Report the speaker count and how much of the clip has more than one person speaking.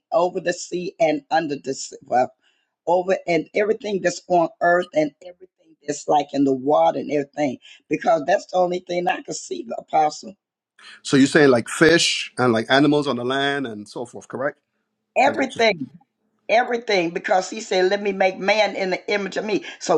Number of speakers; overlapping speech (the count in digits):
2, about 2%